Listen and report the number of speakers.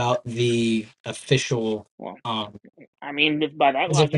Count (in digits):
2